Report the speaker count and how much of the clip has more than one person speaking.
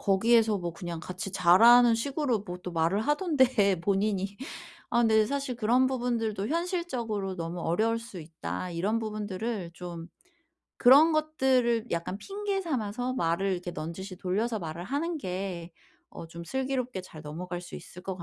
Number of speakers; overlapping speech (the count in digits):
1, no overlap